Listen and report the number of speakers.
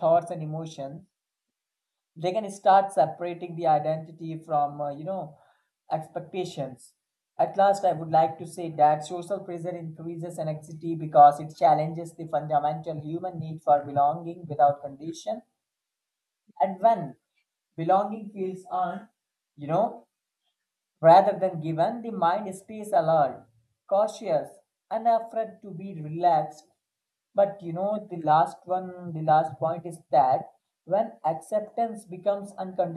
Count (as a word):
one